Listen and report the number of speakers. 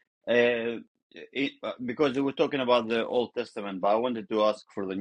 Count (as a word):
one